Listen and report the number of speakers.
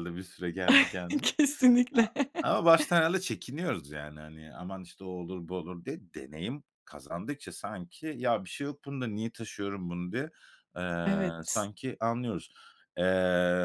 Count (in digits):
2